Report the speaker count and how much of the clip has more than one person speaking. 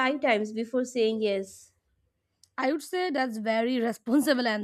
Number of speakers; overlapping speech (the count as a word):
two, no overlap